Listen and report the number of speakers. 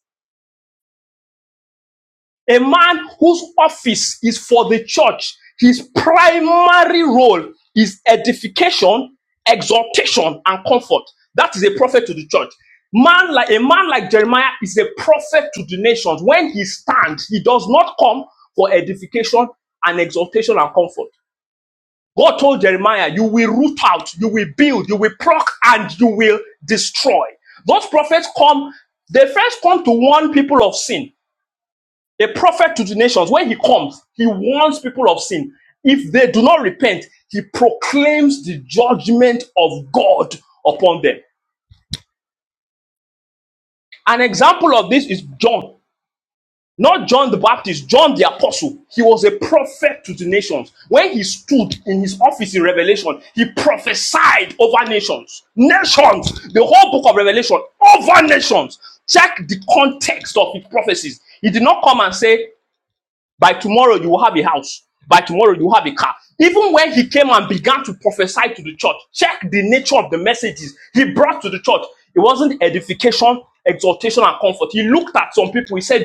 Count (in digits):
1